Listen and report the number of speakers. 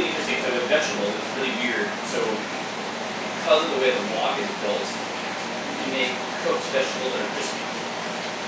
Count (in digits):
1